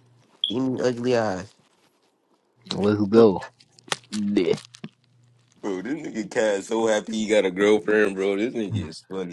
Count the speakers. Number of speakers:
3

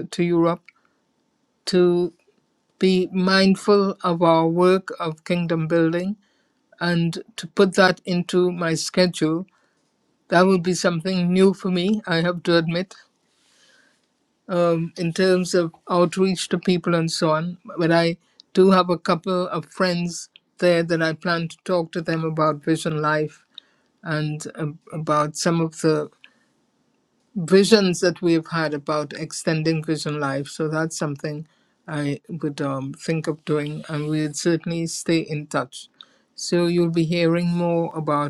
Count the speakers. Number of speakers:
1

